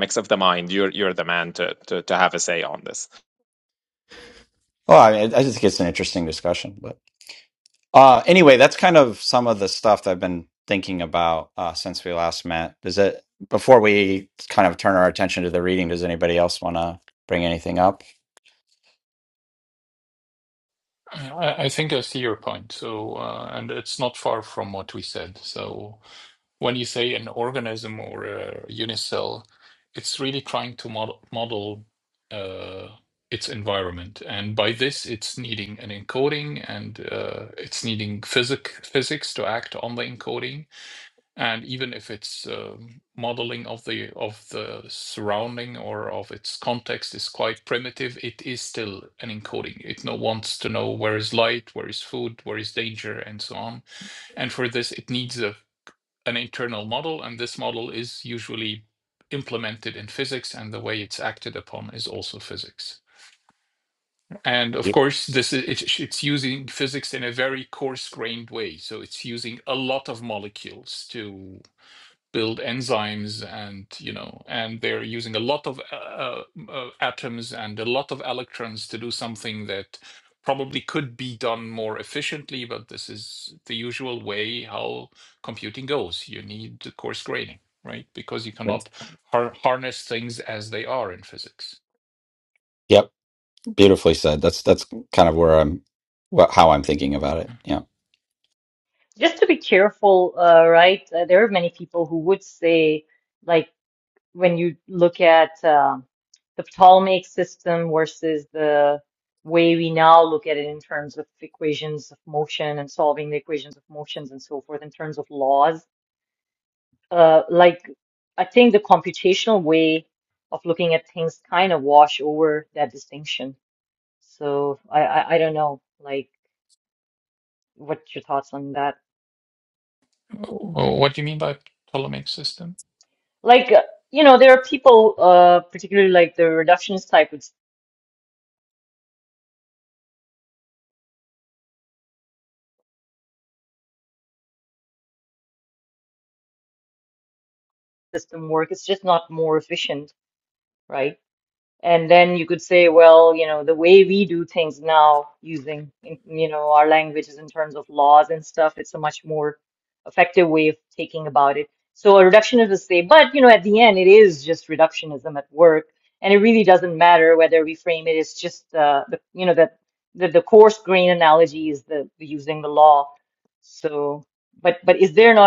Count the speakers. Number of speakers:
four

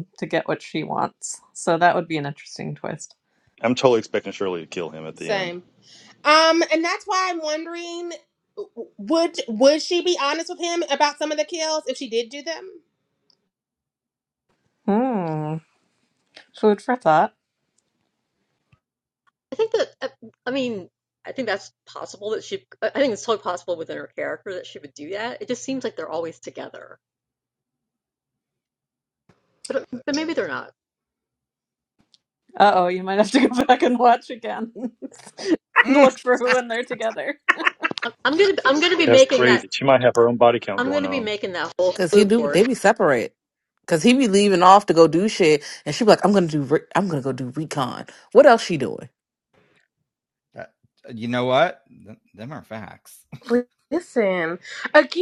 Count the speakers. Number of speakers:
six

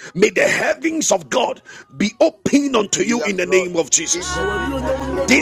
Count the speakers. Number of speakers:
two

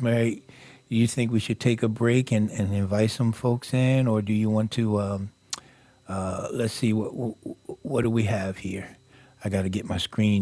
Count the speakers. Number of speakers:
one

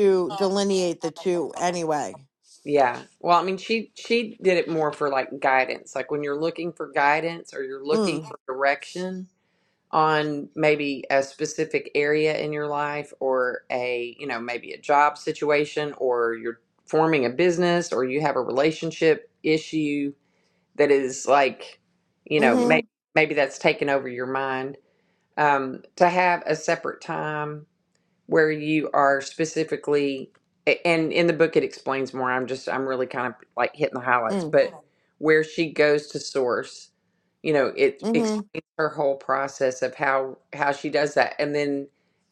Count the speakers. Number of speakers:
two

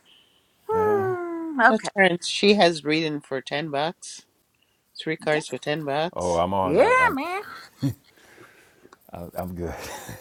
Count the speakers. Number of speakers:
three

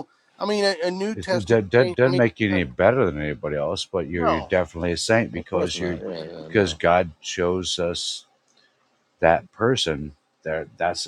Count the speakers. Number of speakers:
three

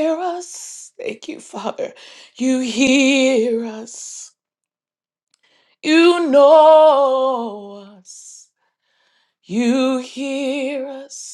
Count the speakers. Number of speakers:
one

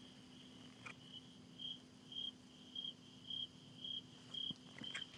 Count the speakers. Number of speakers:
zero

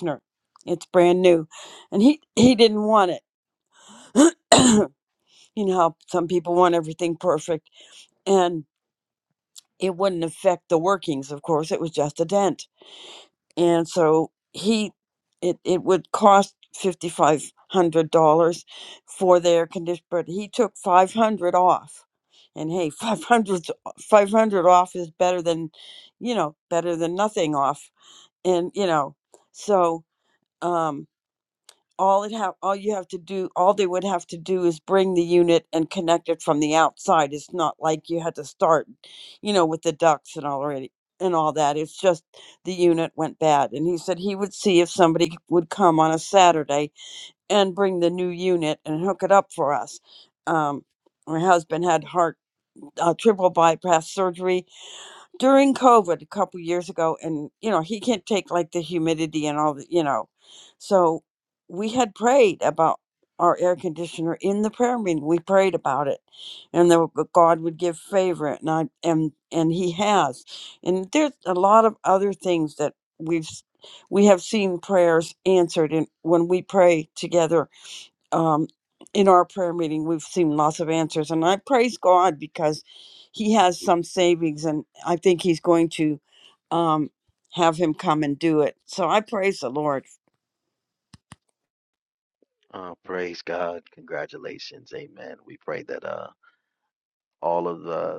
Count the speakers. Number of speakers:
two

